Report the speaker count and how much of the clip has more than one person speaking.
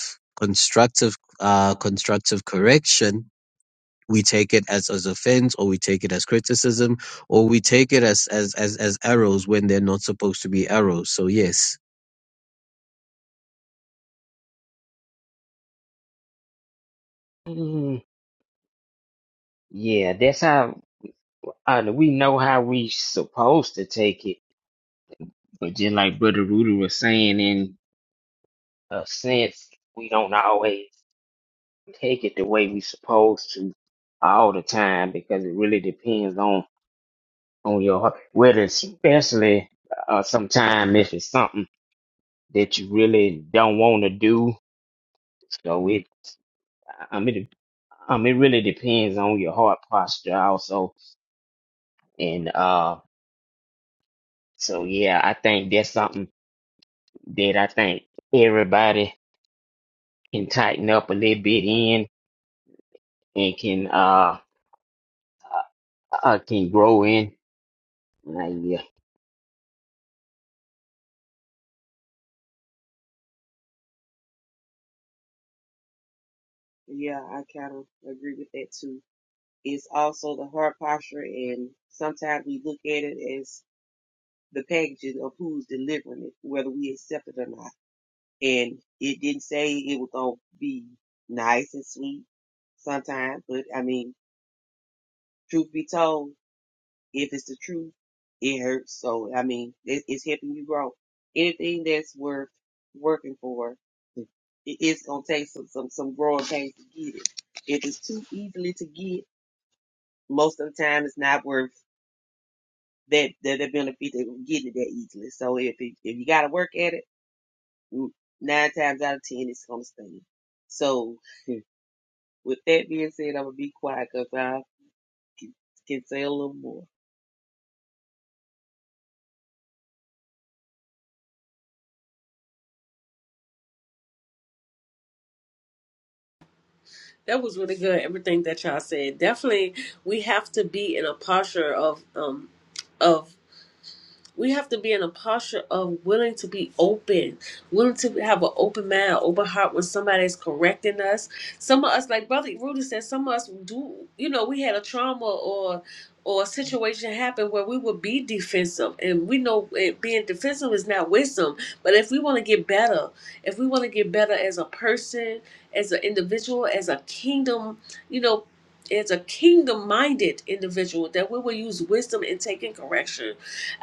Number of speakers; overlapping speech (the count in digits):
4, no overlap